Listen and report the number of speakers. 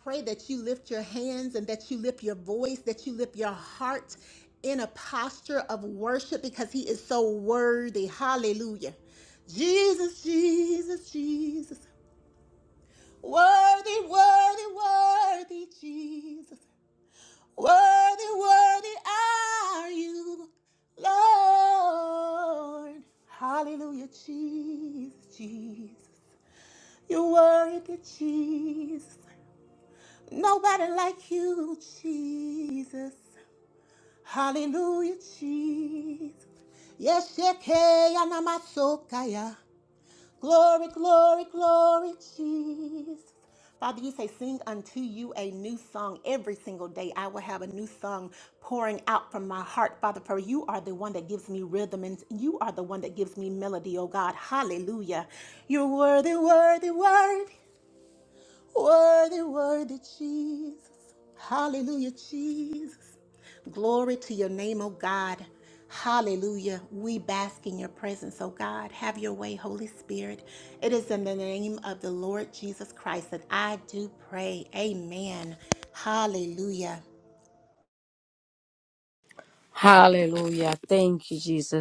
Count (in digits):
2